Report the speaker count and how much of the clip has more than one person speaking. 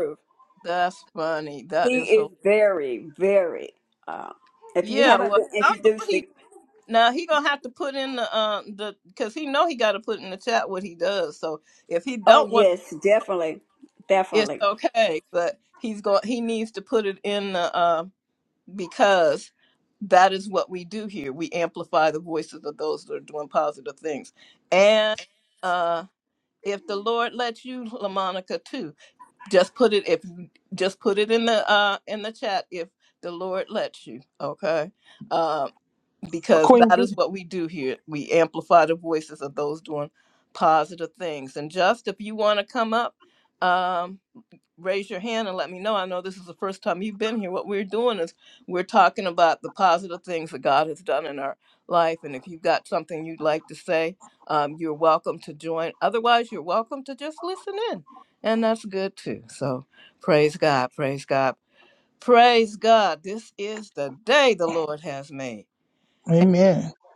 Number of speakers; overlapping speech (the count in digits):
3, about 4%